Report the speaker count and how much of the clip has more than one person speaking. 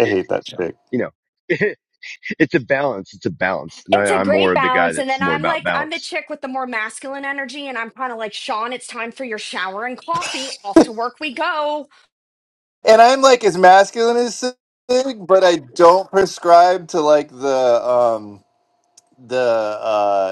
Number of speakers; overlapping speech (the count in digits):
3, about 10%